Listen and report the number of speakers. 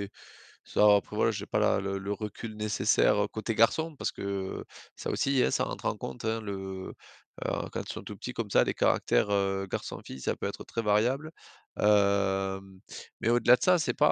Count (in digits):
1